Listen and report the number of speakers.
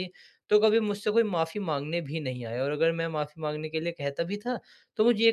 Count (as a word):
one